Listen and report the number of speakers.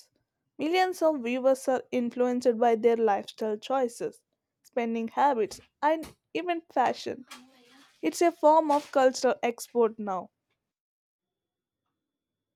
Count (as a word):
one